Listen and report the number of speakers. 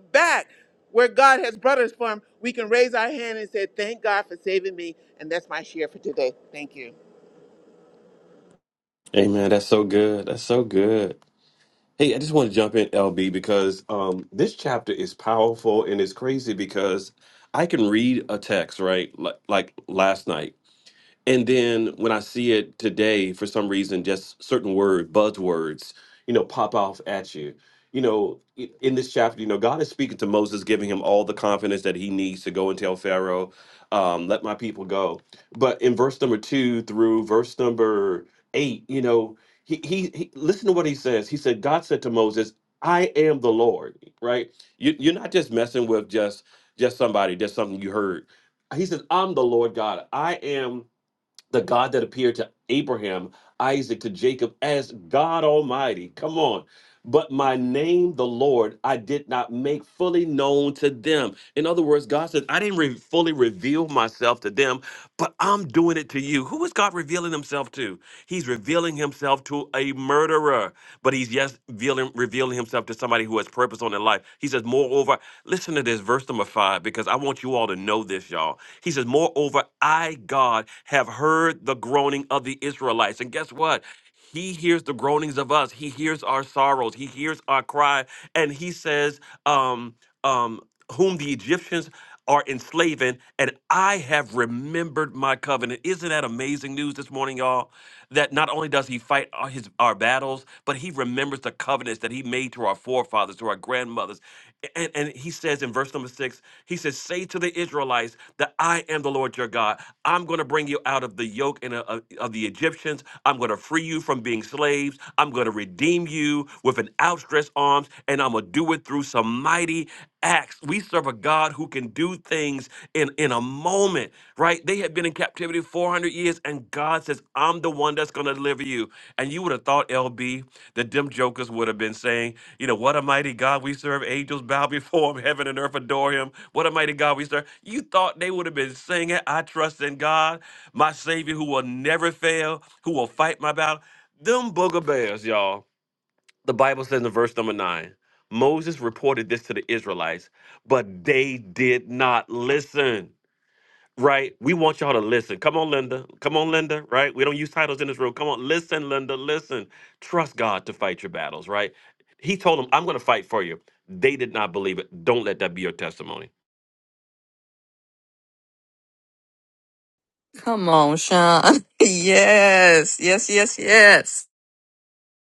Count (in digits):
3